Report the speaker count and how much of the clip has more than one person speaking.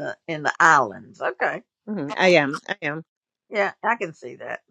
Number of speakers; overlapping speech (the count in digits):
2, no overlap